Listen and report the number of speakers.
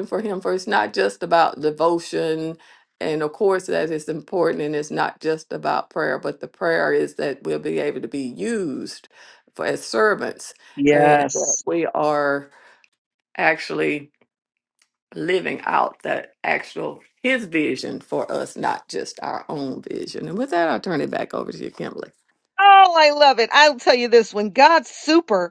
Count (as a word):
two